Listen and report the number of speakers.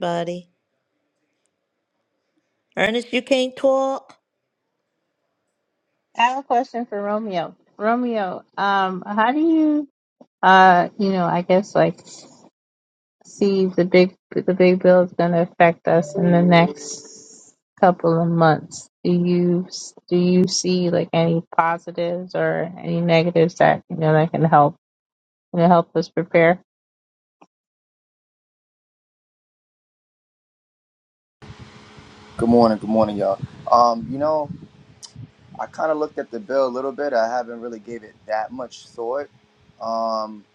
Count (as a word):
three